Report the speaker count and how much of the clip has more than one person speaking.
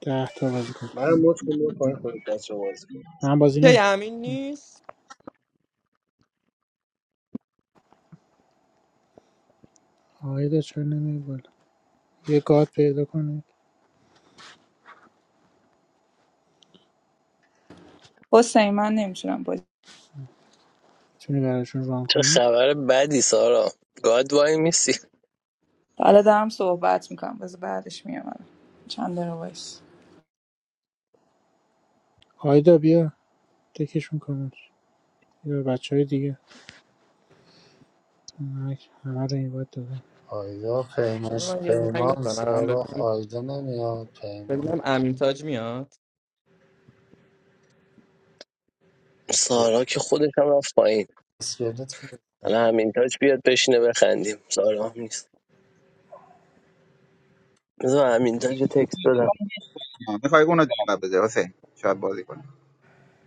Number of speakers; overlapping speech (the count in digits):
7, about 4%